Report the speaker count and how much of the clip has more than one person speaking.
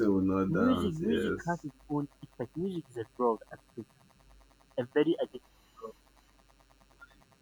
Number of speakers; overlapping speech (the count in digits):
2, about 12%